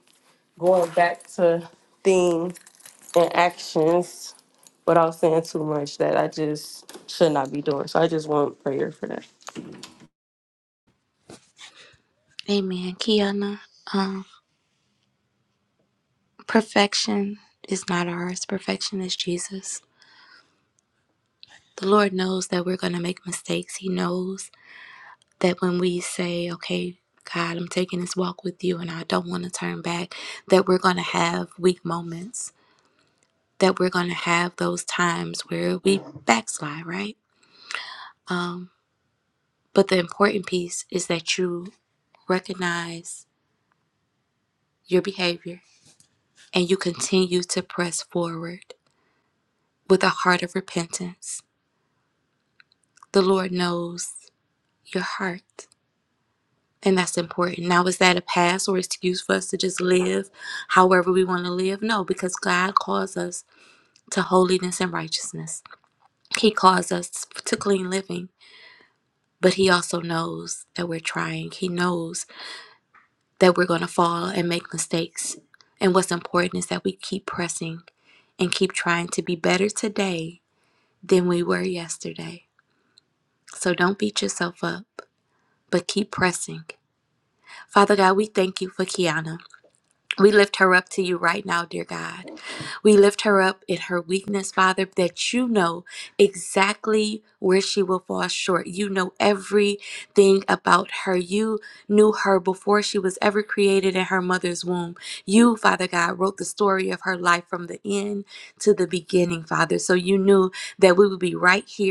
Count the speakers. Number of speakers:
two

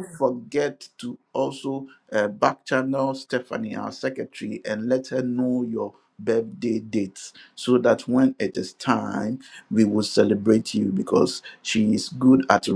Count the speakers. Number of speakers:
one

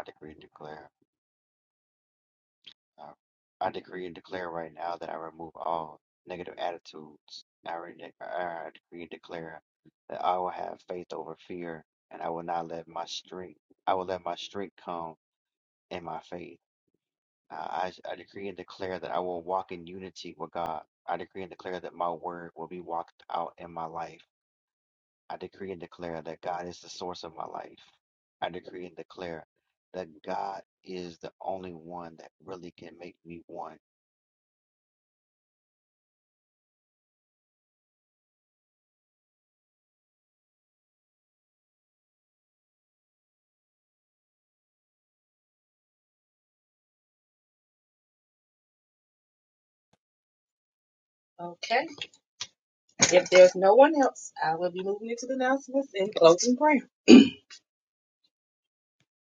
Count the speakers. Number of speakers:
two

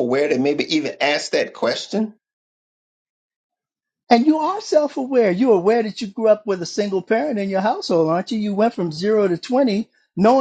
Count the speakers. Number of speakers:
two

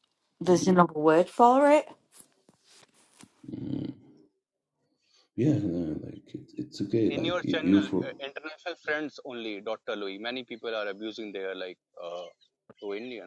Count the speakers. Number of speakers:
three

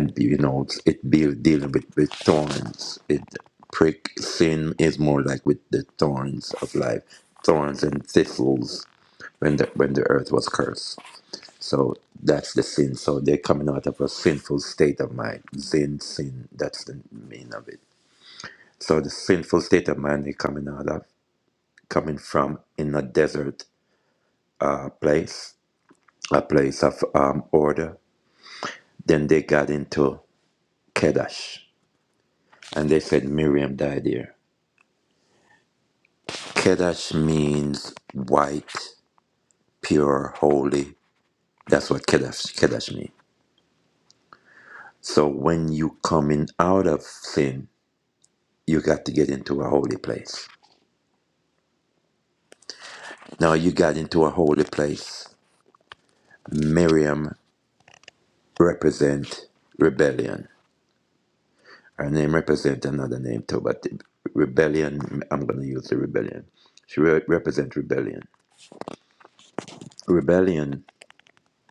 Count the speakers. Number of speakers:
one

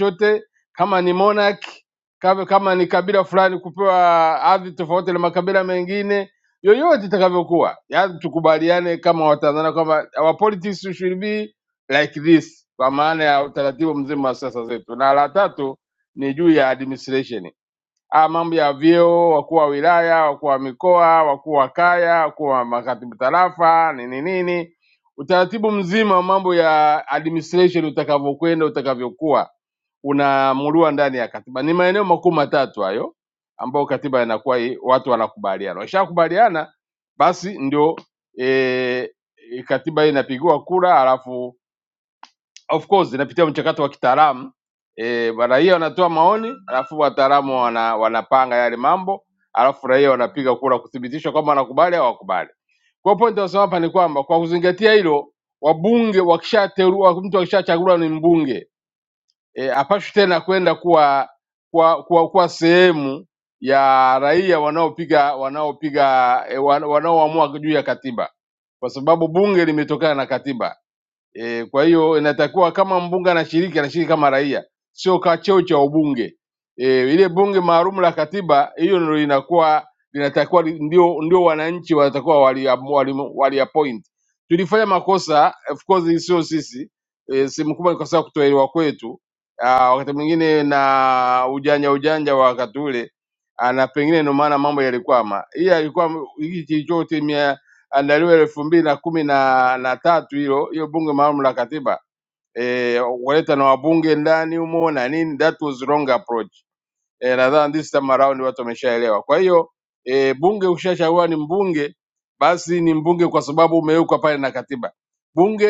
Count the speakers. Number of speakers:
one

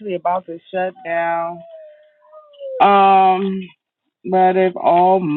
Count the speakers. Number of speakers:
one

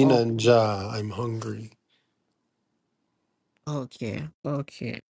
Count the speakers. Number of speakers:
two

